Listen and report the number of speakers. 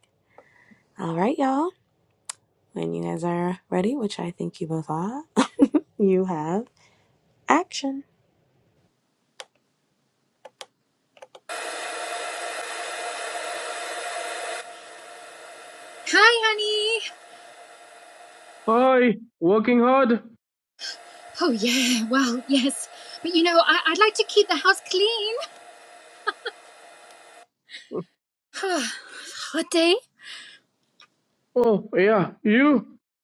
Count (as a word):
three